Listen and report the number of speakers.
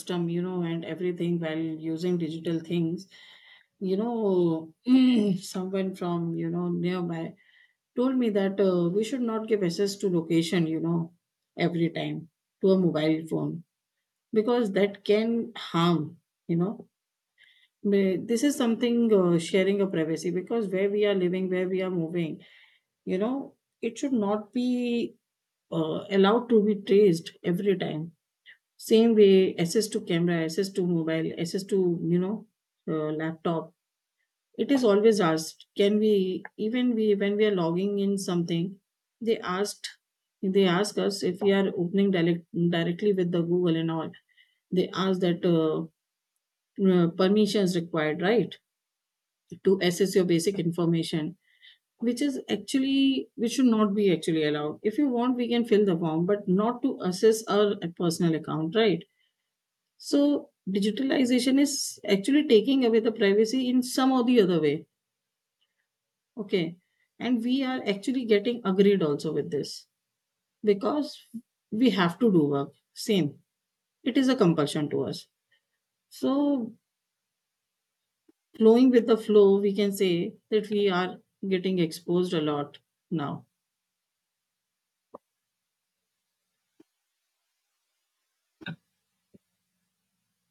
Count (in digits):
1